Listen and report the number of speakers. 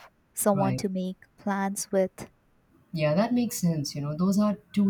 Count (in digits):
2